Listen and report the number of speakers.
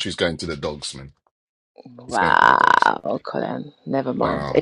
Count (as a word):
two